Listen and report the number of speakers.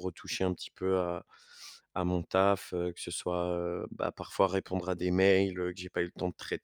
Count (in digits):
1